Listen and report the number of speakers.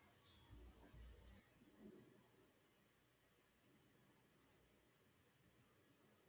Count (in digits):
0